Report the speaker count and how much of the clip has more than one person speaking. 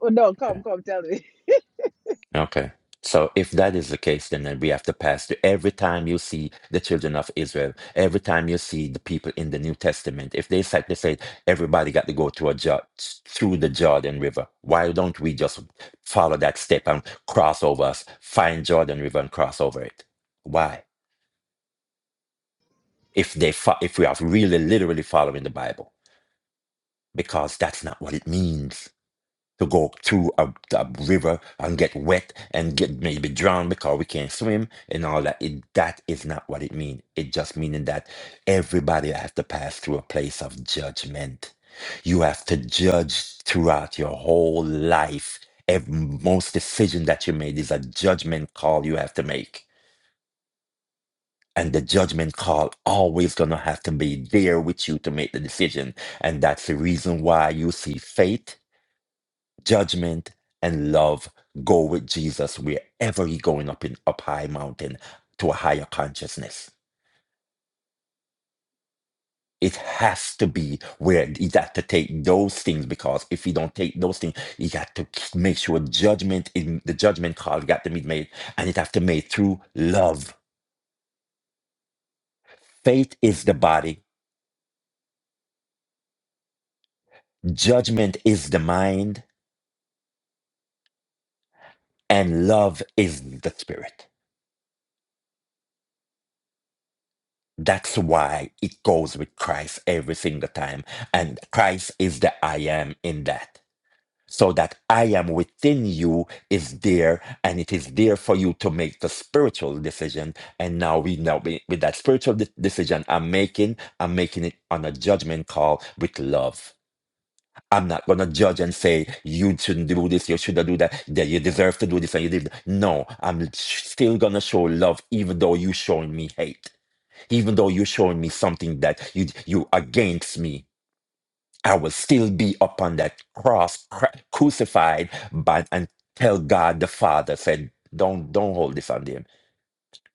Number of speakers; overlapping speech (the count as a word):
two, no overlap